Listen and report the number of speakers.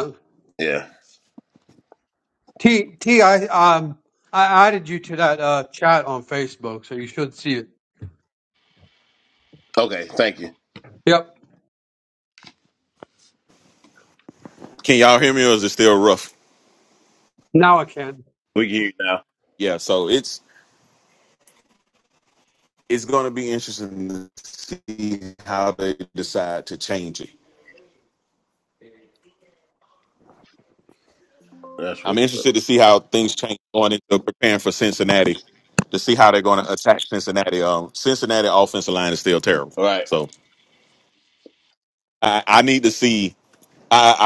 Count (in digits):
3